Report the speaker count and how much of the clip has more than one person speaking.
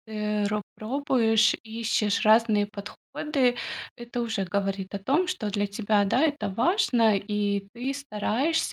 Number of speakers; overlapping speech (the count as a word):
one, no overlap